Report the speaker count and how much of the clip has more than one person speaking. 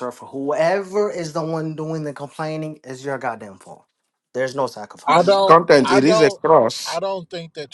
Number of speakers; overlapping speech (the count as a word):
three, about 14%